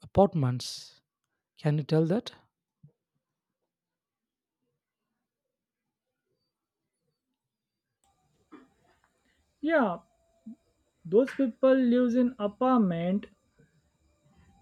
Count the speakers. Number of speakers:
2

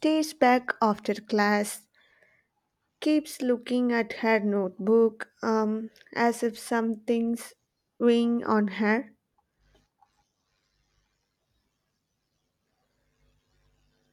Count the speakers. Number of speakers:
1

